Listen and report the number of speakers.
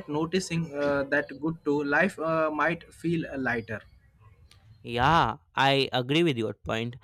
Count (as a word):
two